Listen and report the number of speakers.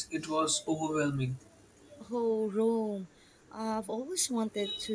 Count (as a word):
two